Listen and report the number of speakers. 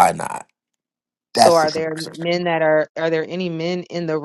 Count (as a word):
two